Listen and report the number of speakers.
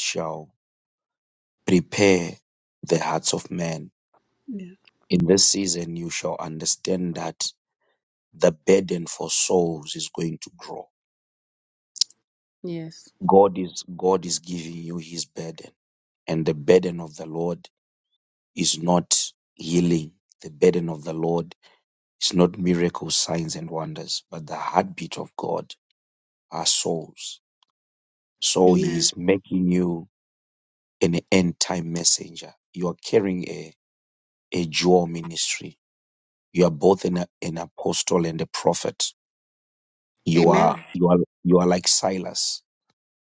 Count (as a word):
two